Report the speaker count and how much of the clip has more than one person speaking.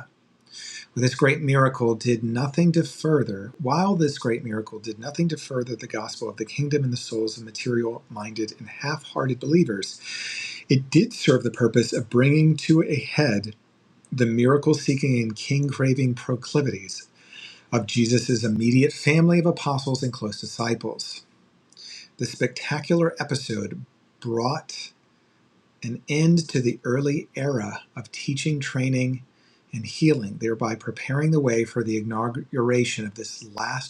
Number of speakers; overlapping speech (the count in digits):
1, no overlap